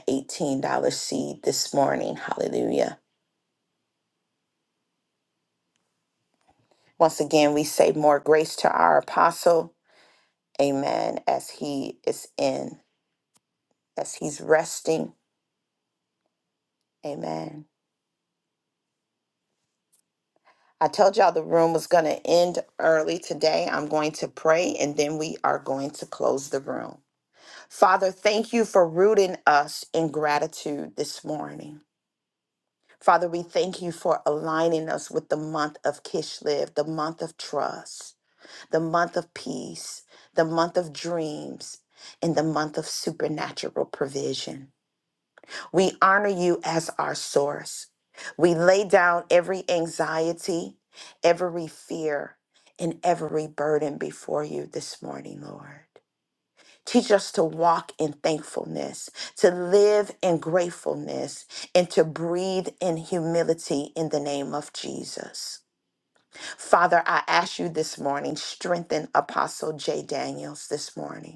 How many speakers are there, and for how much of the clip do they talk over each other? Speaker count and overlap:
1, no overlap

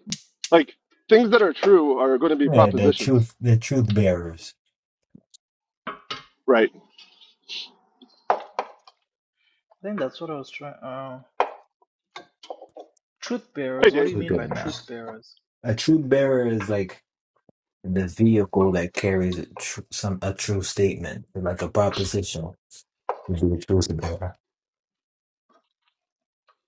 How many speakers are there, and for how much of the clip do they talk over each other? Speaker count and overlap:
3, about 6%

